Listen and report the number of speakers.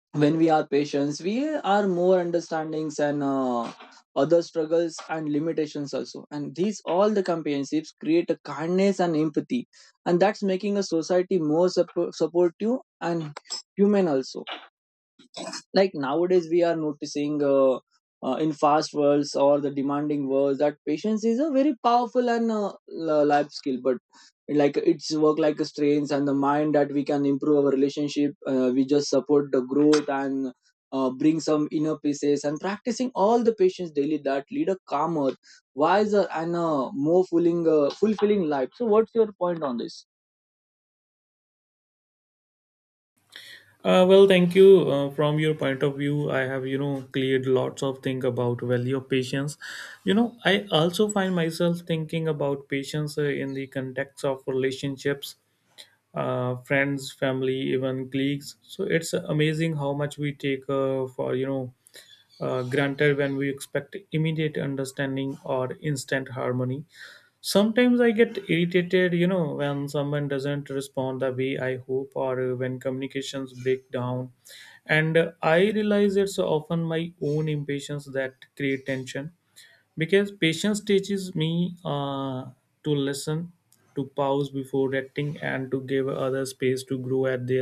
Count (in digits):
2